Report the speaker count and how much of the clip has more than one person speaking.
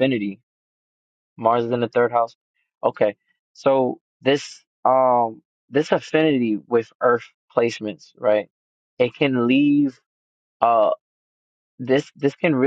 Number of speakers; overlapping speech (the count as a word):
one, no overlap